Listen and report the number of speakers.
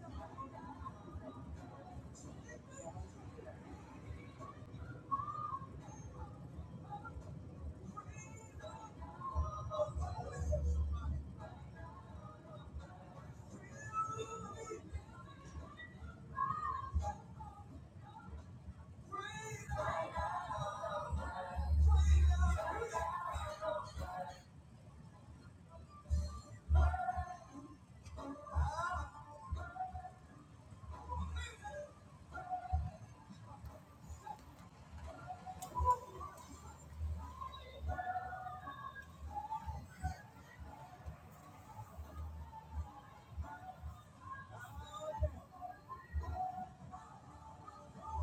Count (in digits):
0